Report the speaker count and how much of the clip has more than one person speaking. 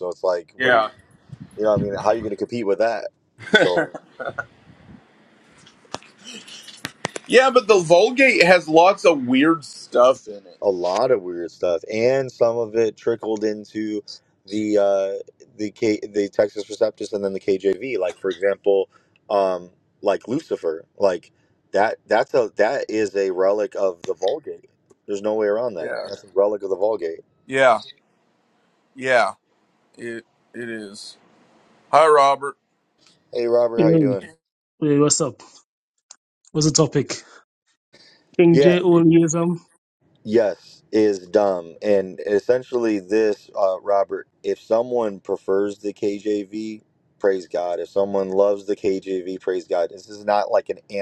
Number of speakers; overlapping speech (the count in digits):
3, about 2%